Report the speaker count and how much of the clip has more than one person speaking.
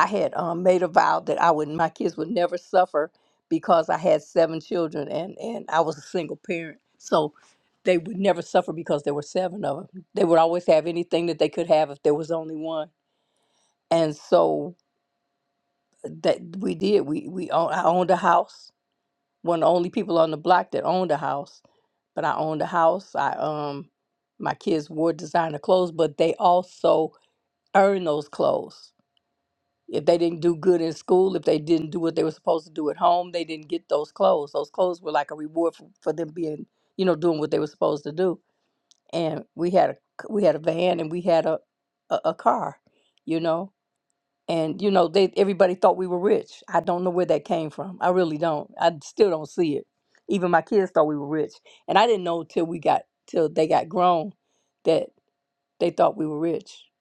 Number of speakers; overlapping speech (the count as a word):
one, no overlap